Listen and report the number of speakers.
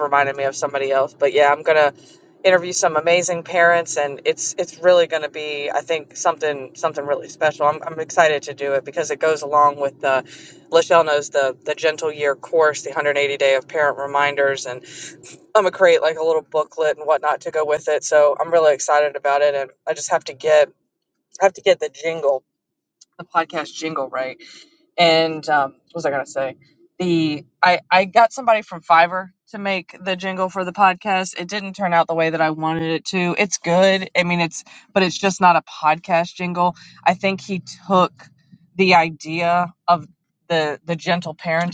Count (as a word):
one